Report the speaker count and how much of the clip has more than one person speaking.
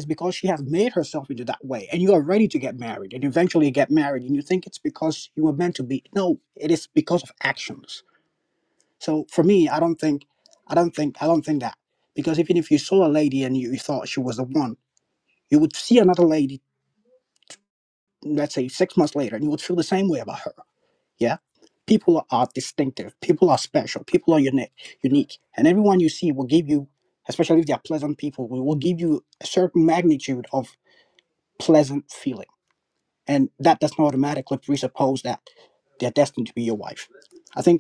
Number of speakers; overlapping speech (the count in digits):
1, no overlap